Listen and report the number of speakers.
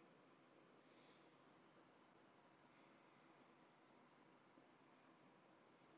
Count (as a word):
zero